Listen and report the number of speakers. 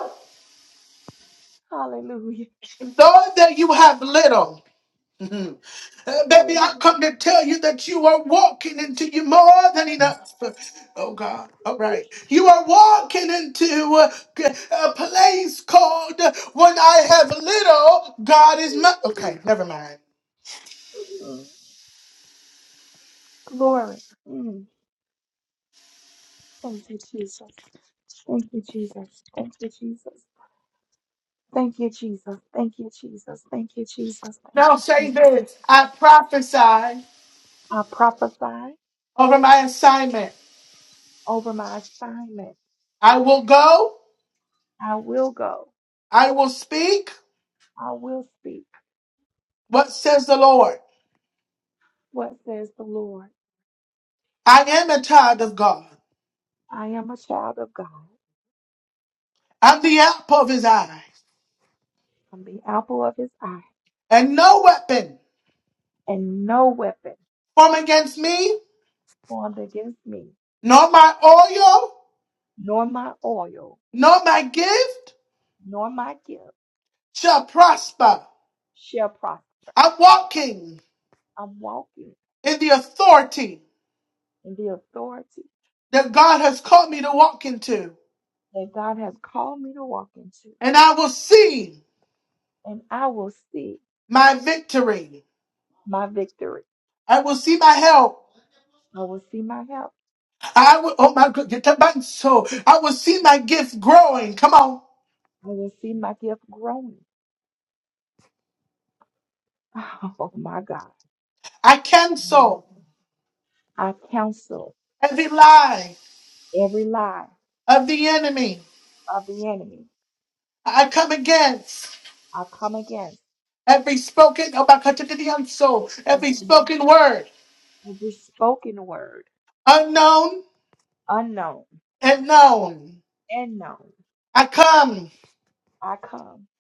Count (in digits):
2